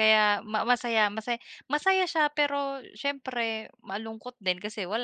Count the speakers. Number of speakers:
1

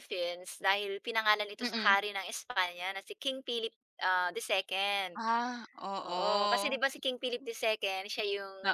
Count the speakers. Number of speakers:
2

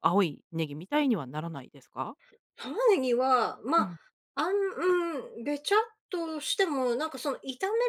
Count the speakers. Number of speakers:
2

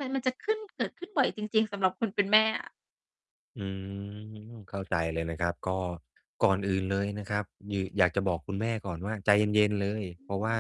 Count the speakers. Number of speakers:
2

